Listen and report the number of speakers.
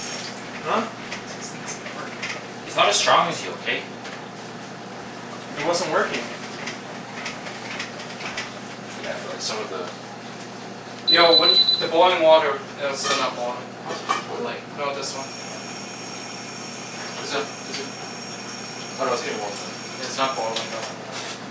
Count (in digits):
4